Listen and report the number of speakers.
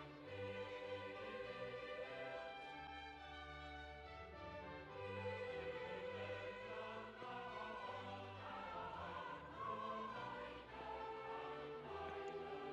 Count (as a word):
zero